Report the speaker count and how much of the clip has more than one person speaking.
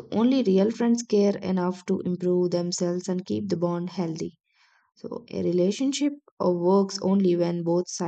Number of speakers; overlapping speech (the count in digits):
1, no overlap